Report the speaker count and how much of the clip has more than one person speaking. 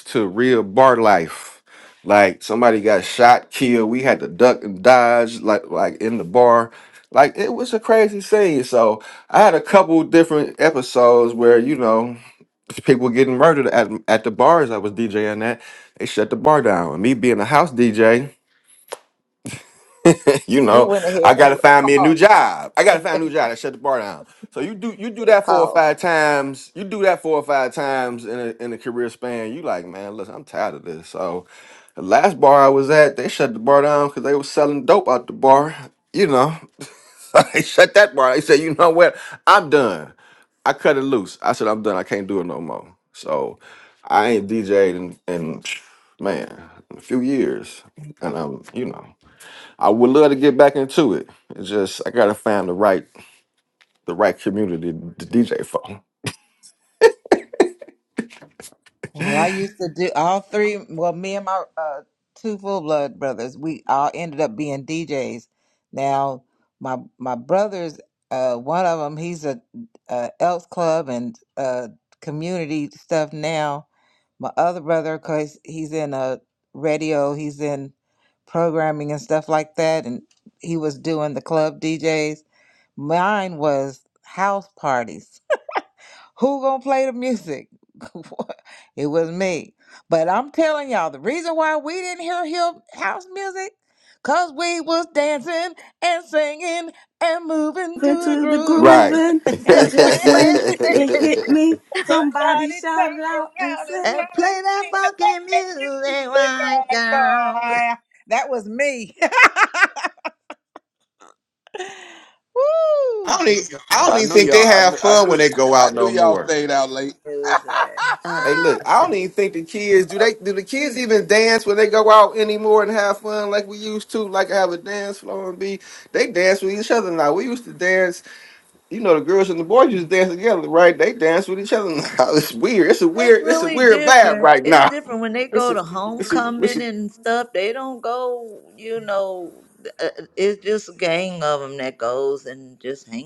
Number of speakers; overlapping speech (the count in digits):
5, about 11%